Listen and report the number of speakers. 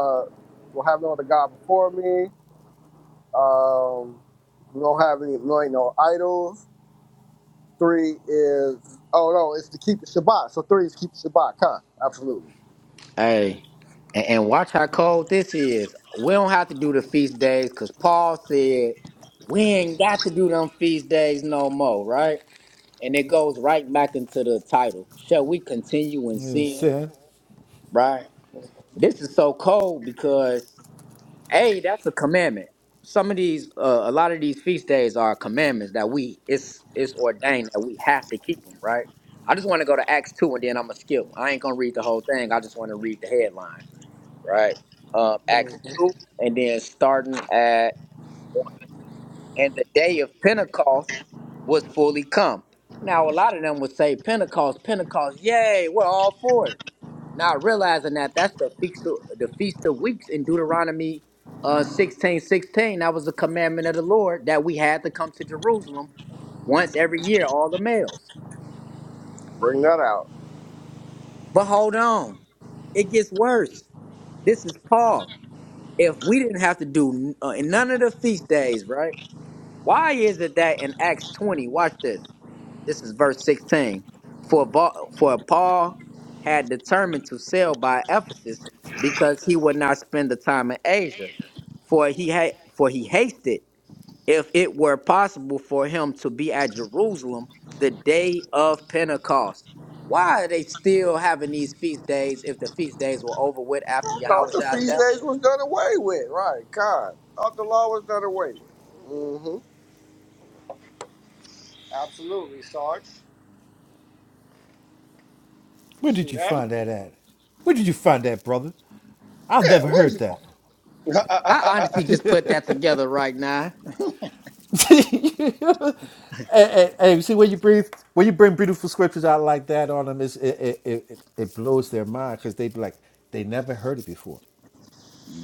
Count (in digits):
3